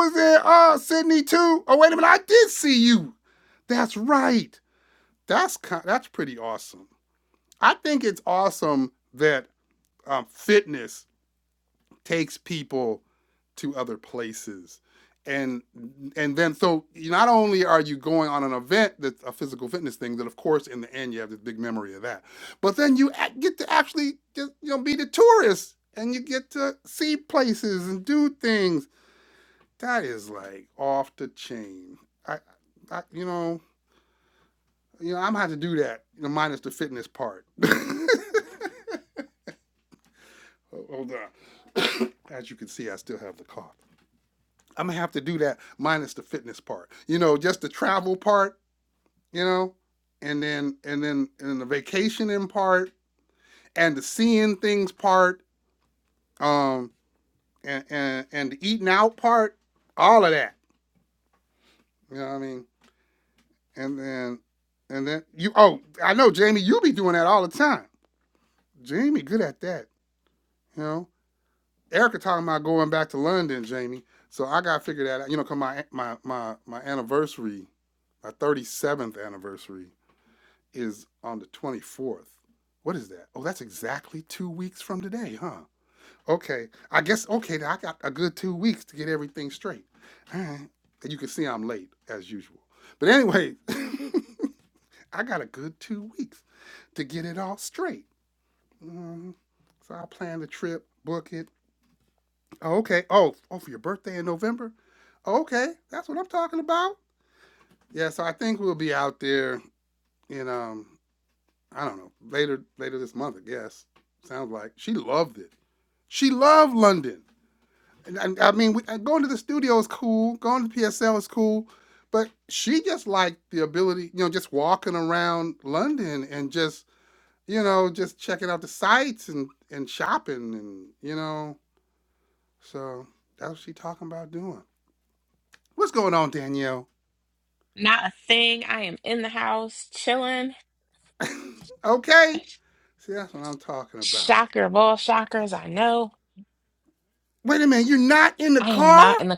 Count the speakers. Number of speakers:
2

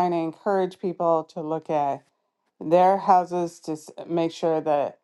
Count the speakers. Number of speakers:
1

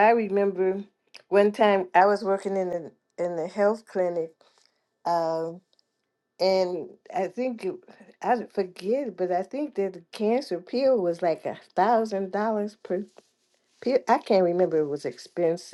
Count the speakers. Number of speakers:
1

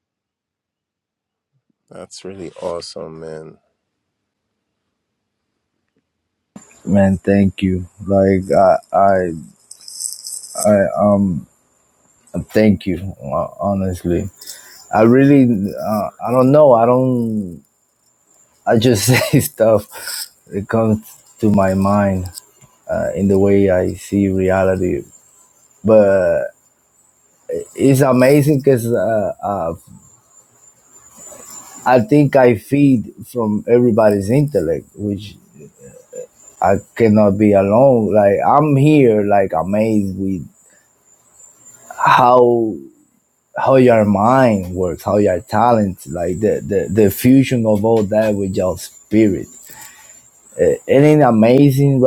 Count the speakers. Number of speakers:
2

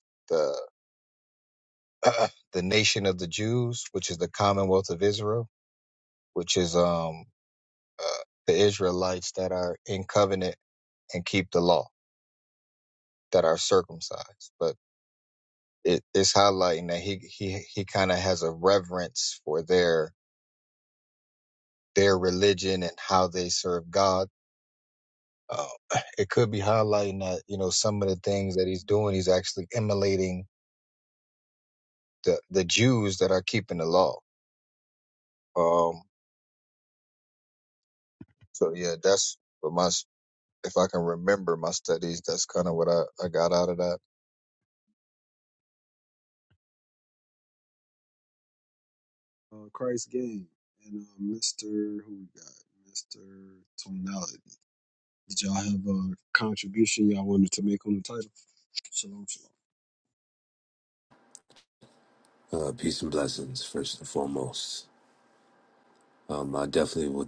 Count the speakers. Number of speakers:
3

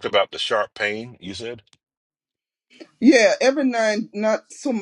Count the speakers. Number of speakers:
2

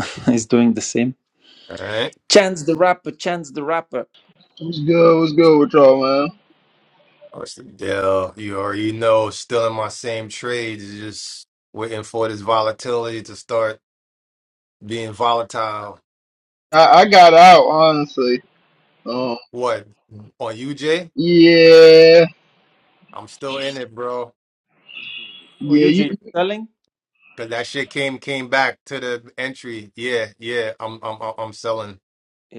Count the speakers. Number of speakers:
3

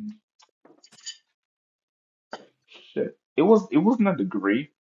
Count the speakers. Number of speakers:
1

